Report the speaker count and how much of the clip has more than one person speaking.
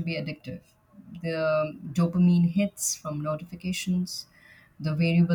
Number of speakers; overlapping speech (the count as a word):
one, no overlap